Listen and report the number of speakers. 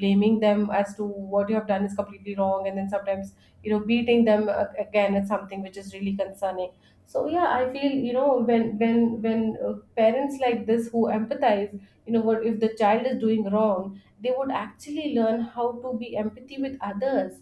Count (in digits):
1